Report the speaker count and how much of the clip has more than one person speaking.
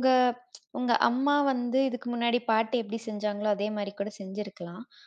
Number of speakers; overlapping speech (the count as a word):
one, no overlap